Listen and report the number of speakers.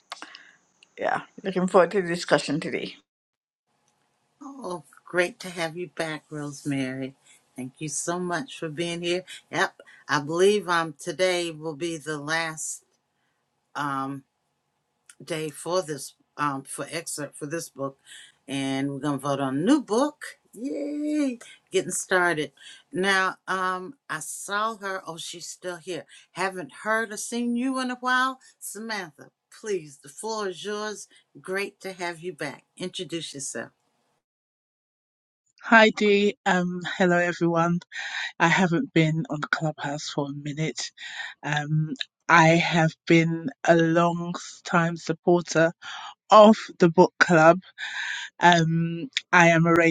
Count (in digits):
3